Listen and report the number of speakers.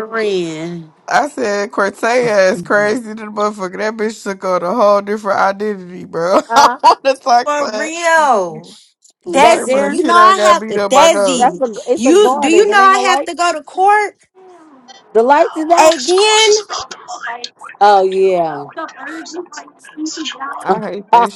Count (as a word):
four